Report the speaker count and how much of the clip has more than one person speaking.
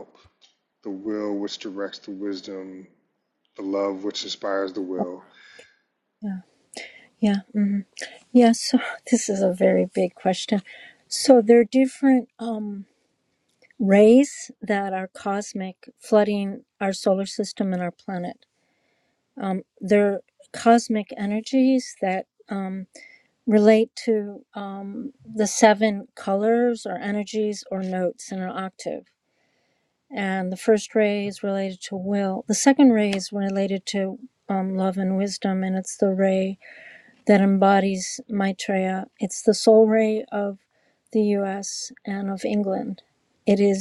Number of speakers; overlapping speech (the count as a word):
two, no overlap